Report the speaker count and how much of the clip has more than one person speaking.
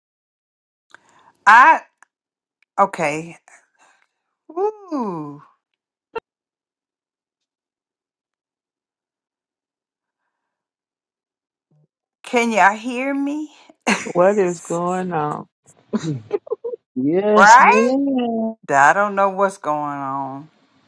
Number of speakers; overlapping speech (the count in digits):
3, about 3%